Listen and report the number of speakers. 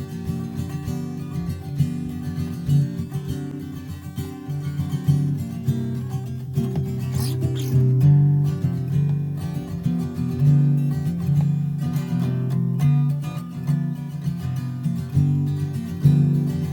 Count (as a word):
zero